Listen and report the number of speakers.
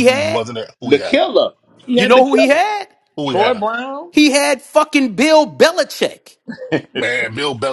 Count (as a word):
three